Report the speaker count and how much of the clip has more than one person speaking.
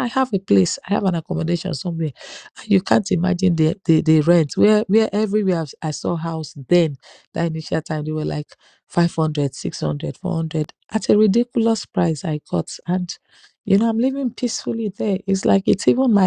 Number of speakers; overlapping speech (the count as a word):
one, no overlap